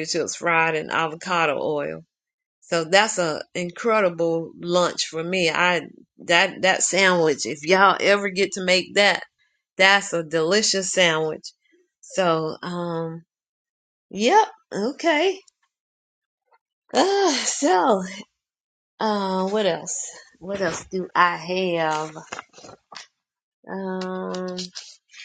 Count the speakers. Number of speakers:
1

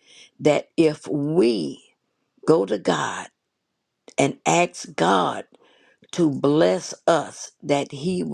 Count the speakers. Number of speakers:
1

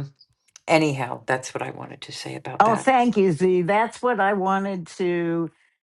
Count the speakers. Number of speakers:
2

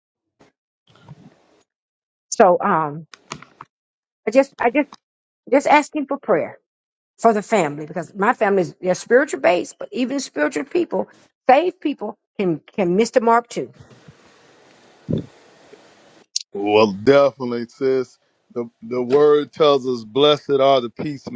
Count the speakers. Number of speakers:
2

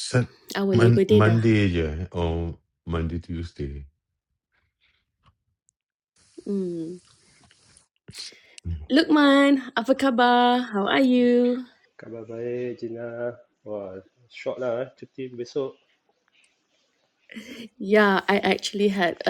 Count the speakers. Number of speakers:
3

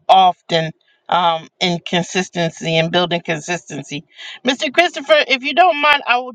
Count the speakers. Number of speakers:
1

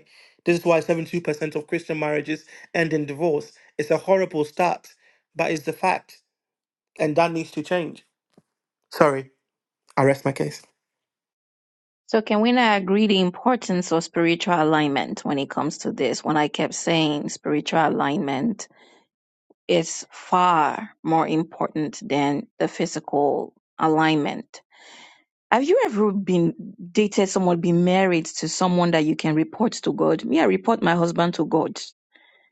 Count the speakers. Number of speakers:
2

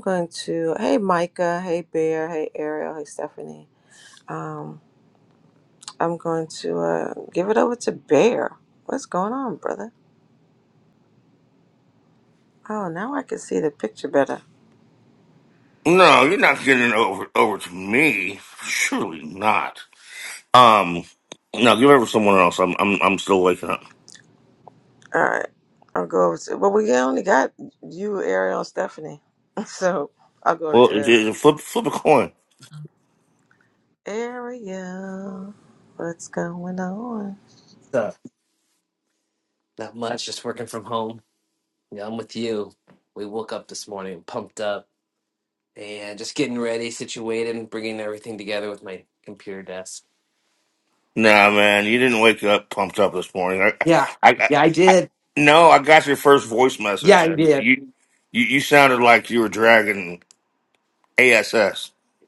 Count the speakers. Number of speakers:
3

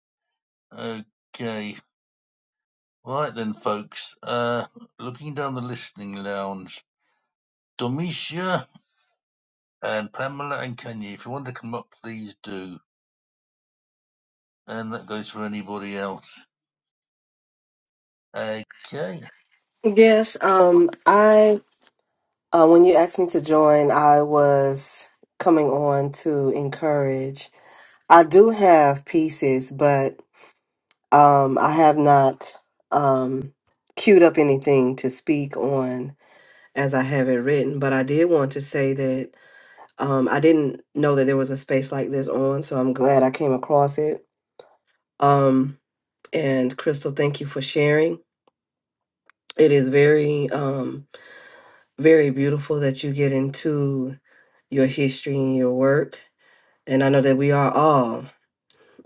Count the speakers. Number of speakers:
2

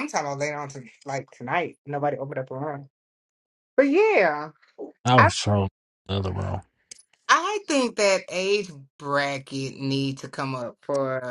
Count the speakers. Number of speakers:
2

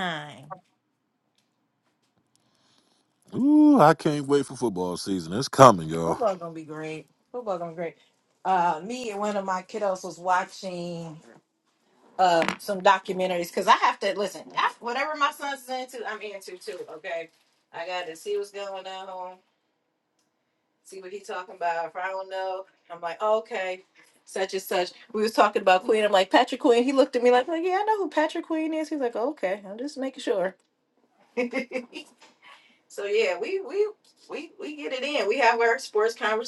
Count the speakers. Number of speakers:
2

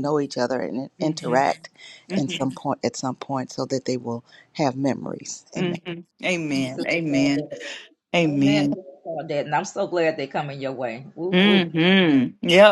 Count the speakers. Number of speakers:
3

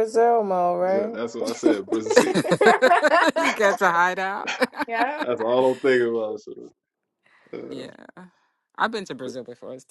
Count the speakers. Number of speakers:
3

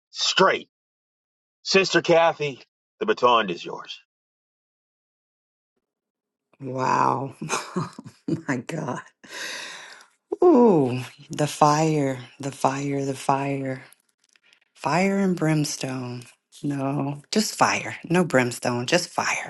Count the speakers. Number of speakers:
2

